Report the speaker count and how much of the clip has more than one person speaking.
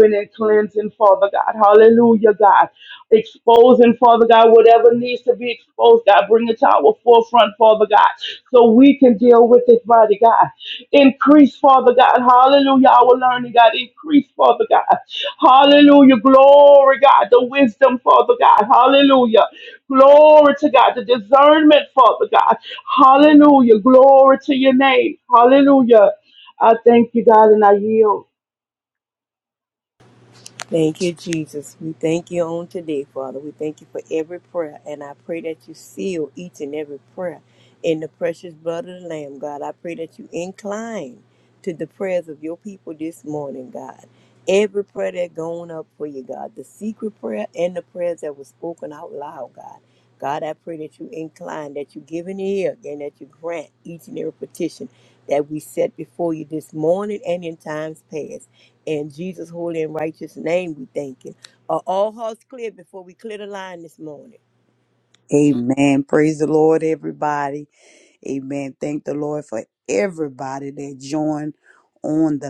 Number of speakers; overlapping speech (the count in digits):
3, no overlap